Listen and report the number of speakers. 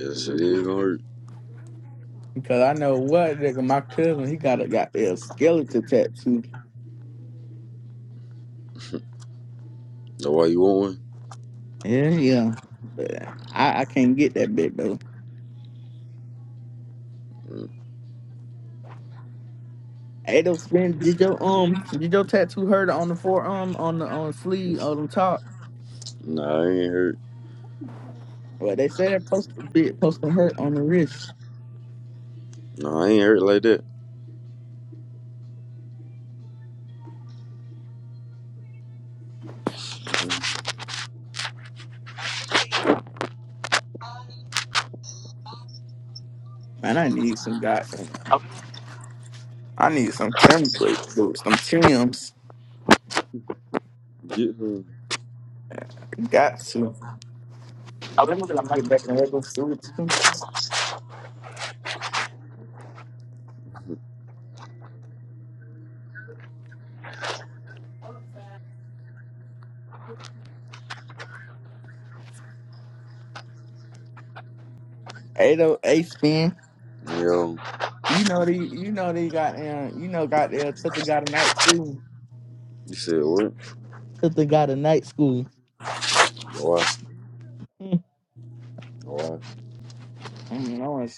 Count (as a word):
two